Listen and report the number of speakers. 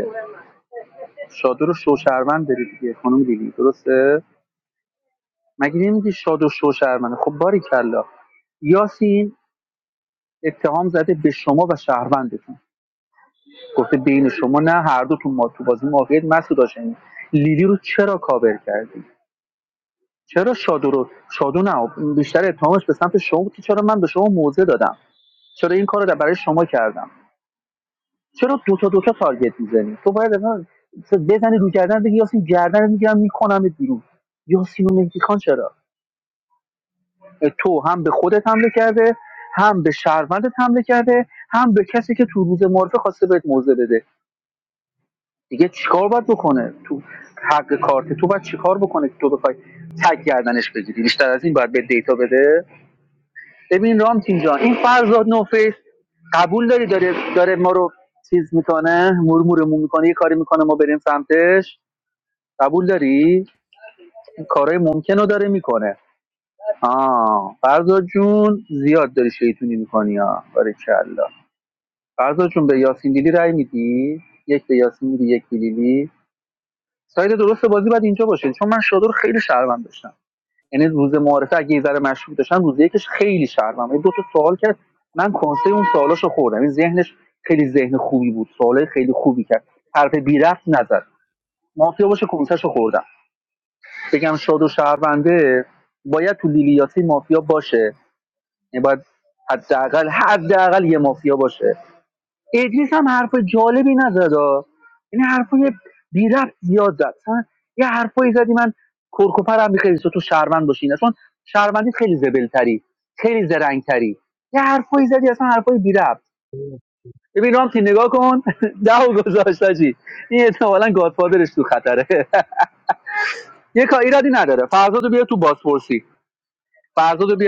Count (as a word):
one